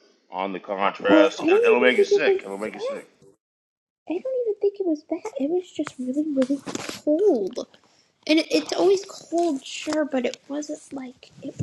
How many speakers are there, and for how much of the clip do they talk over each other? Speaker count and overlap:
two, about 18%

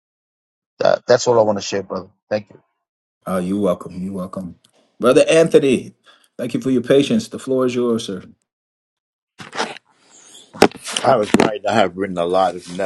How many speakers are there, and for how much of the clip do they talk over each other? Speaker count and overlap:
three, no overlap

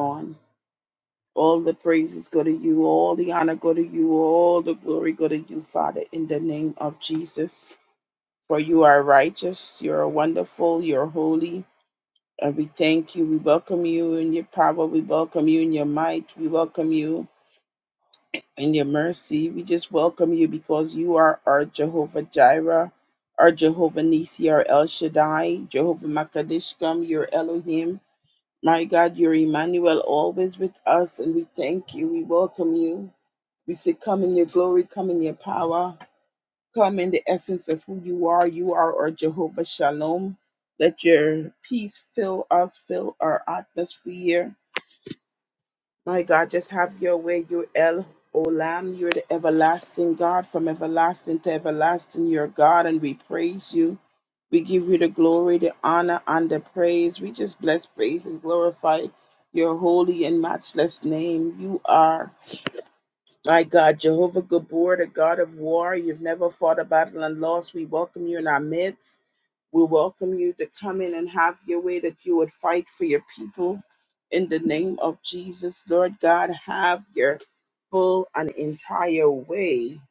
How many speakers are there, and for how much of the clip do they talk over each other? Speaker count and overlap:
one, no overlap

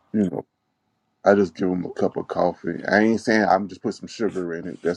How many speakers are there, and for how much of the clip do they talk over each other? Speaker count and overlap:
one, no overlap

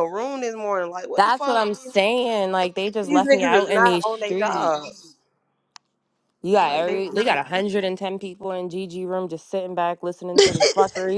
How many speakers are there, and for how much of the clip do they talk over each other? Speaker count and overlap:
two, about 26%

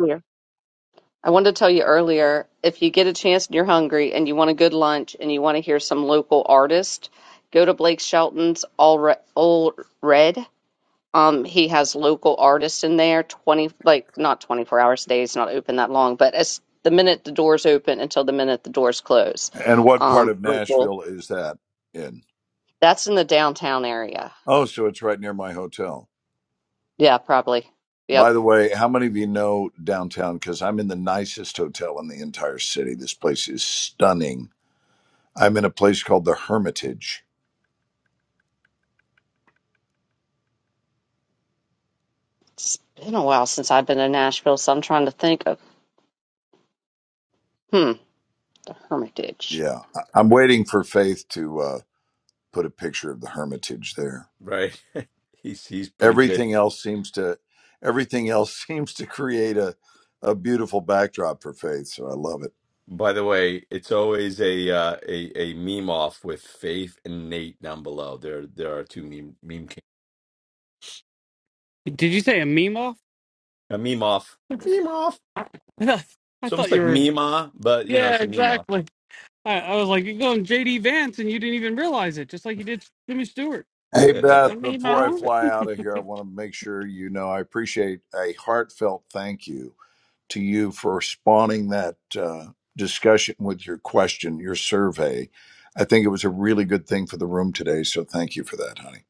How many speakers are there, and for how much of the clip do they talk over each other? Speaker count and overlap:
four, about 4%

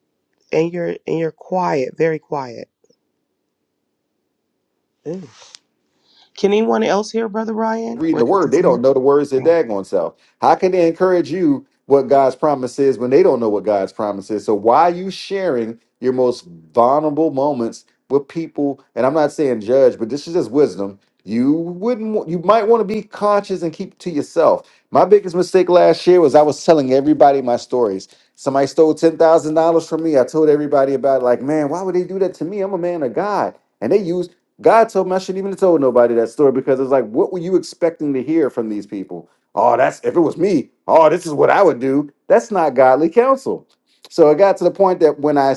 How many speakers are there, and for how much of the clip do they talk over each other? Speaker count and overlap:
two, about 2%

